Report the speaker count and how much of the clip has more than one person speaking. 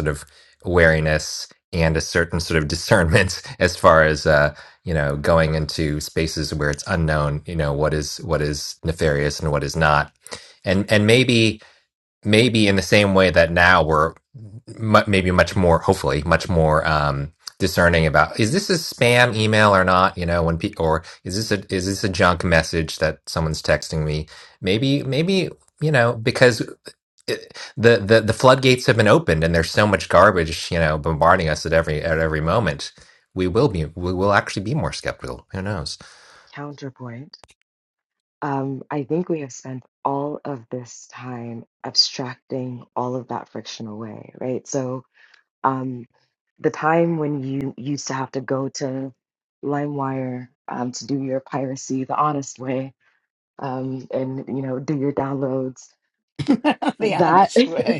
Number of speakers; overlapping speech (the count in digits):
3, about 1%